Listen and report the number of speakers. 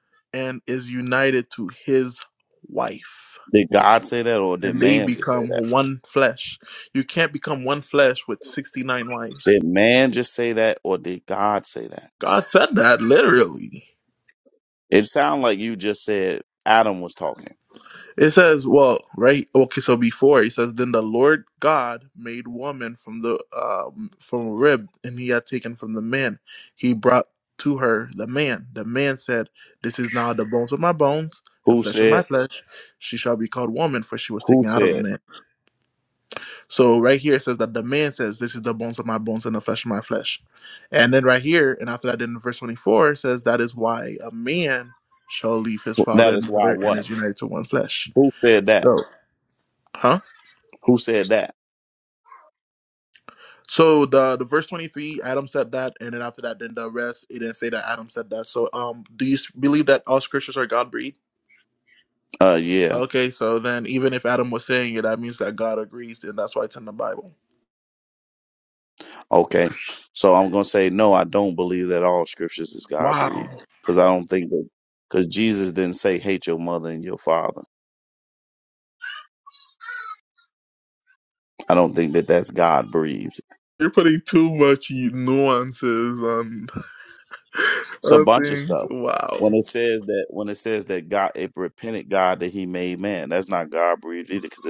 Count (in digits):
2